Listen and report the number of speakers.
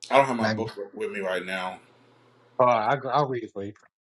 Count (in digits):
2